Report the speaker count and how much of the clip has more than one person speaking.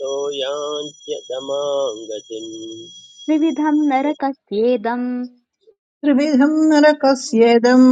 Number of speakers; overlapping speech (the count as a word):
three, no overlap